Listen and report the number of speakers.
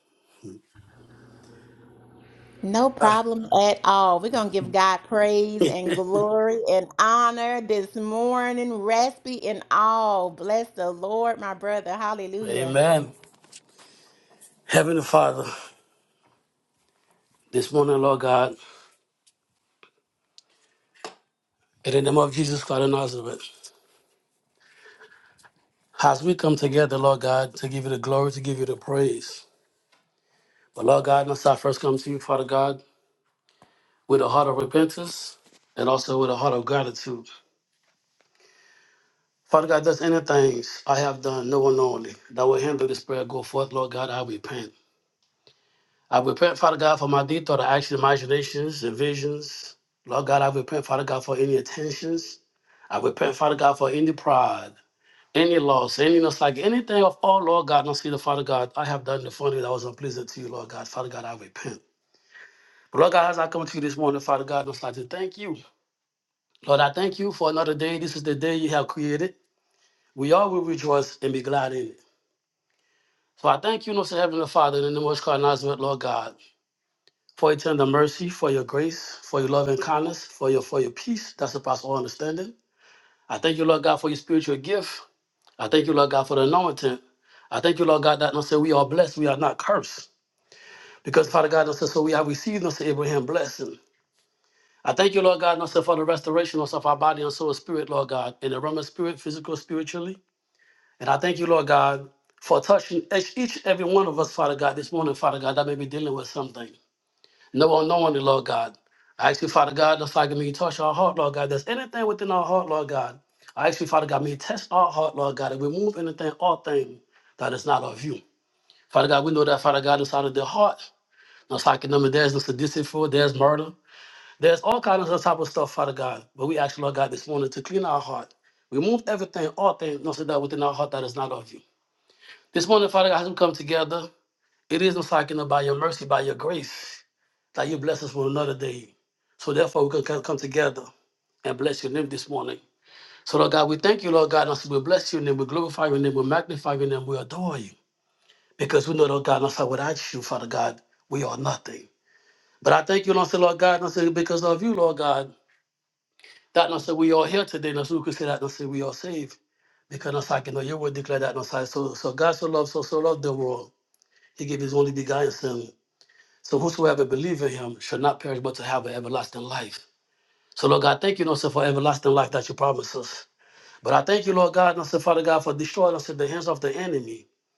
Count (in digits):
2